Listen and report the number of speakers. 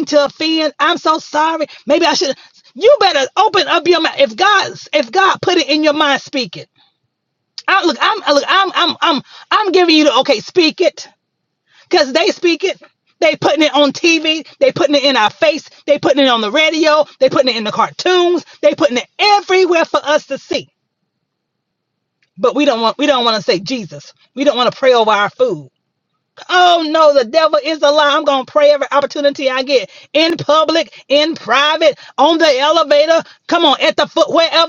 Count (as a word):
one